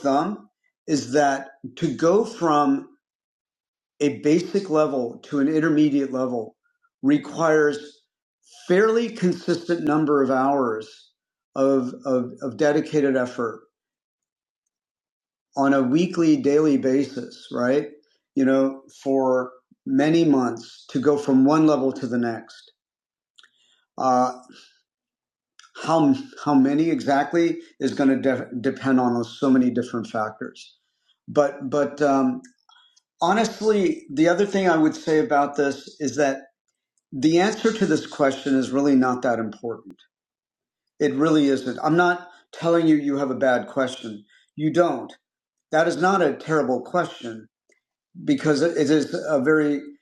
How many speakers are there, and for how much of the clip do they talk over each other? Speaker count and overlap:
1, no overlap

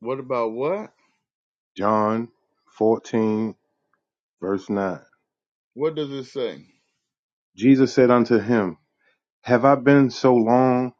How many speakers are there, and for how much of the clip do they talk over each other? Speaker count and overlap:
2, no overlap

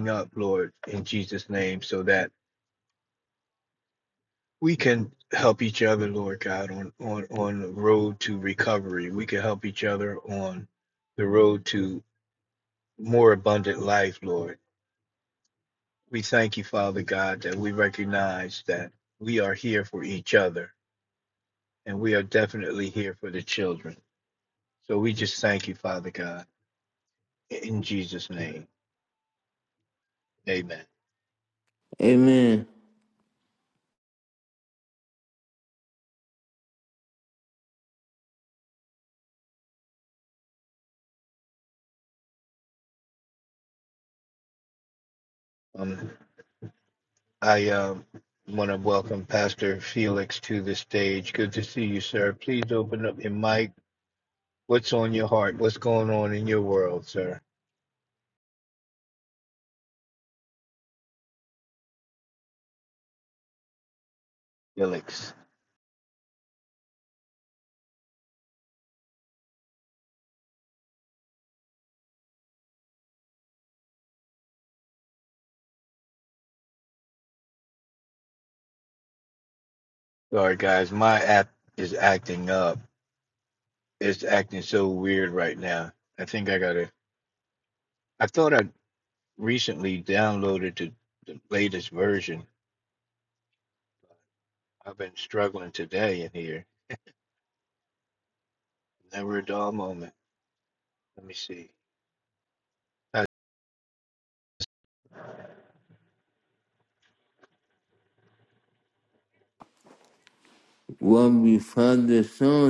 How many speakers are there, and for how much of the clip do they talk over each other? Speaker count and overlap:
2, no overlap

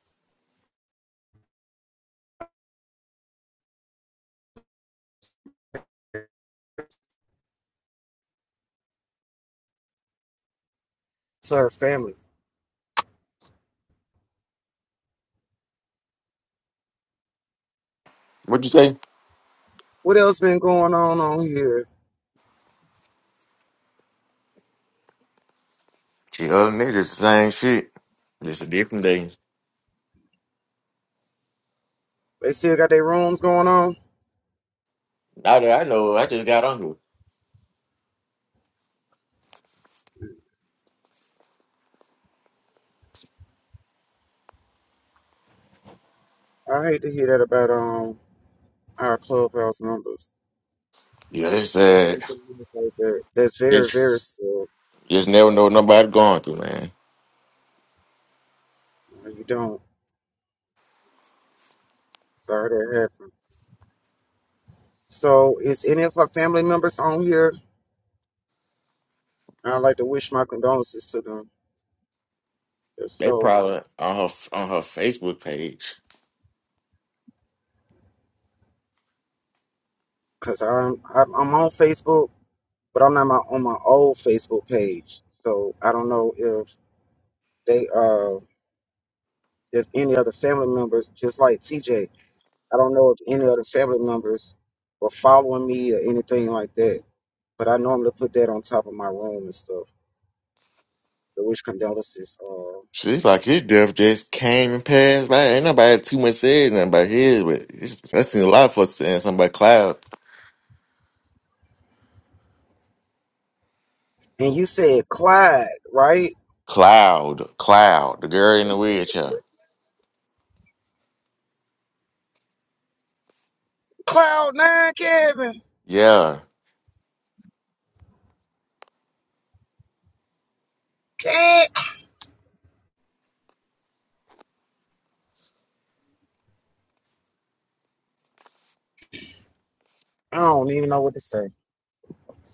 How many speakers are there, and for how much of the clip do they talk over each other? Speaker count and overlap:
2, about 1%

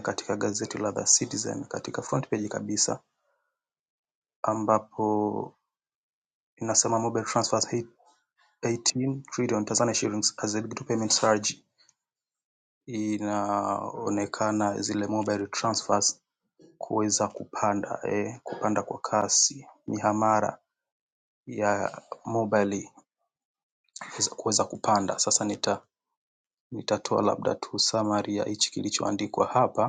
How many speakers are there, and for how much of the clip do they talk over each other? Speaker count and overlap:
1, no overlap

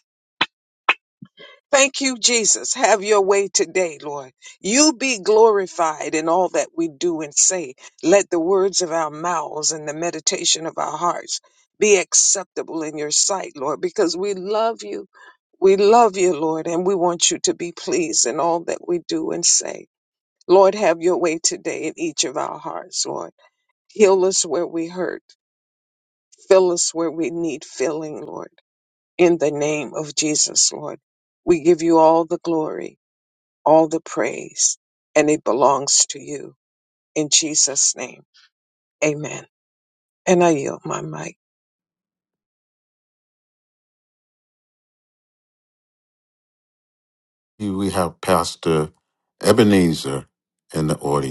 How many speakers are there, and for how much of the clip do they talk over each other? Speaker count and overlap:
2, no overlap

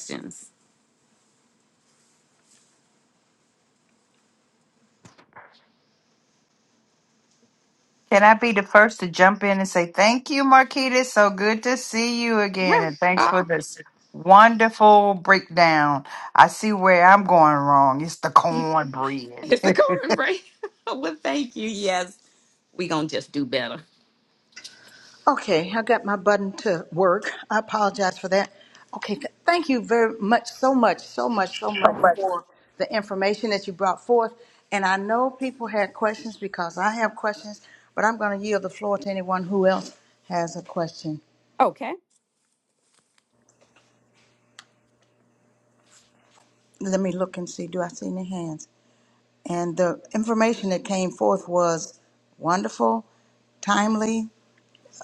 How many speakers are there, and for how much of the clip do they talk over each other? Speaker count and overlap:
3, about 1%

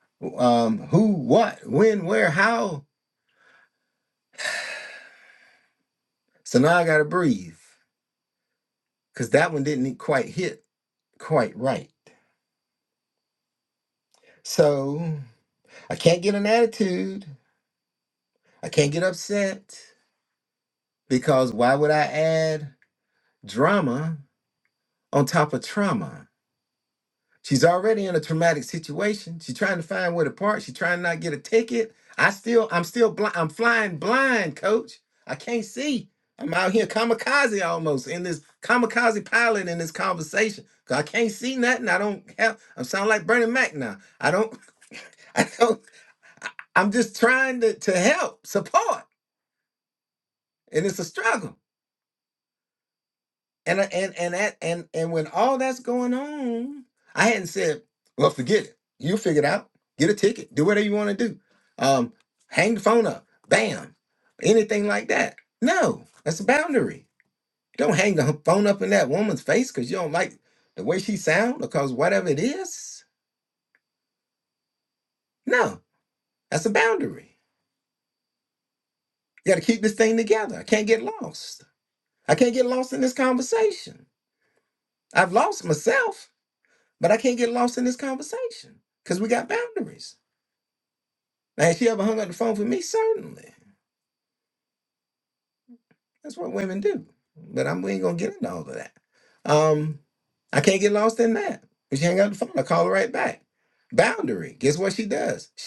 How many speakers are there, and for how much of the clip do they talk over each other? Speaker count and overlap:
1, no overlap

